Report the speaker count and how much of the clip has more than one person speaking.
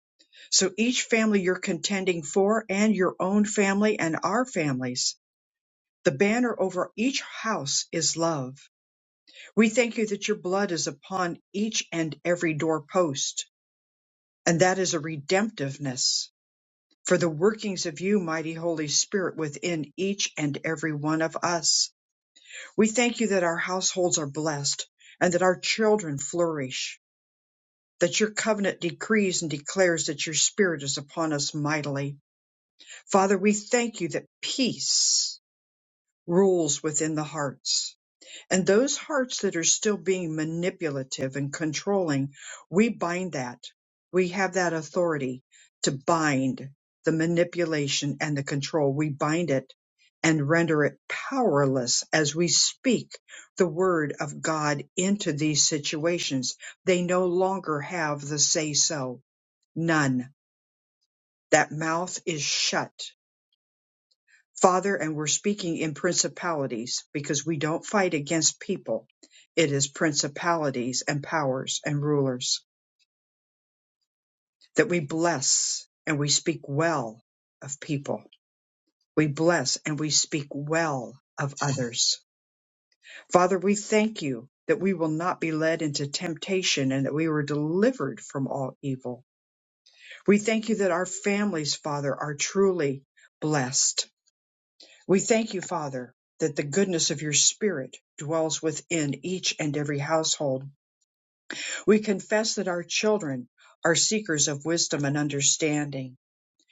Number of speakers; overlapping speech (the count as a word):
one, no overlap